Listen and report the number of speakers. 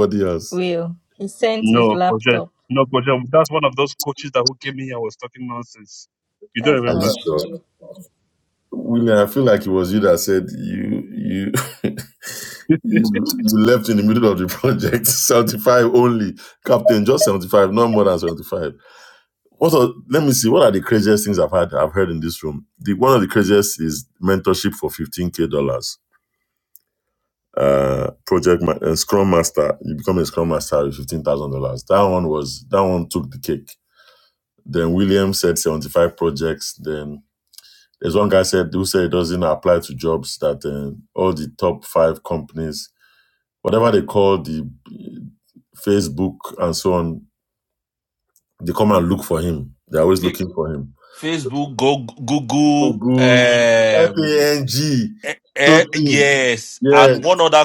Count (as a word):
four